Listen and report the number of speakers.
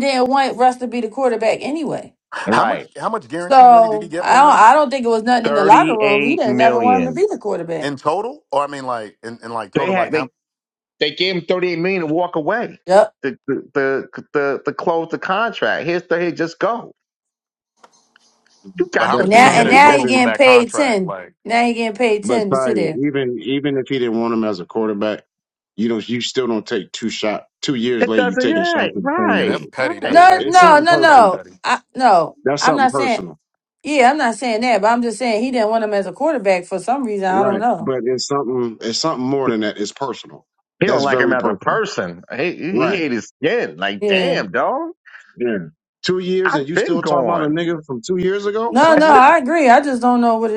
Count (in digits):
4